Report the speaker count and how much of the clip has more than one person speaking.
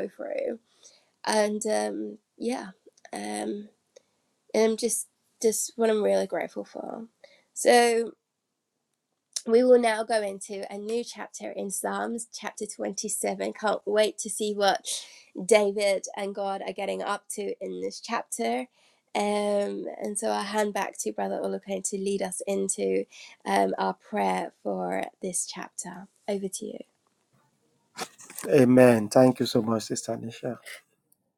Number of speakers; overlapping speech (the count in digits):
2, no overlap